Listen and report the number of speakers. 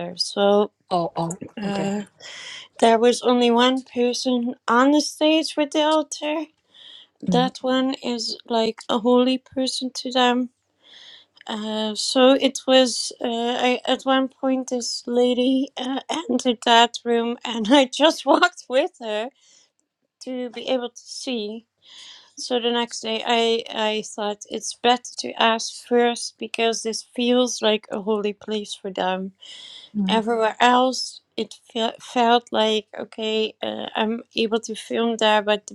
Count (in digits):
2